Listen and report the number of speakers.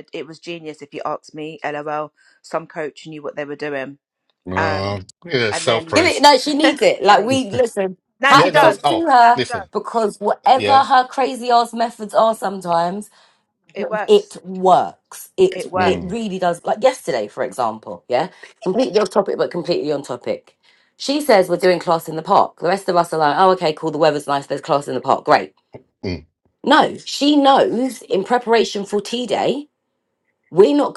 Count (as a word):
three